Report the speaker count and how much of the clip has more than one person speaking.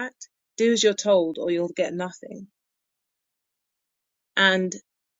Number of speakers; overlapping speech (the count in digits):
1, no overlap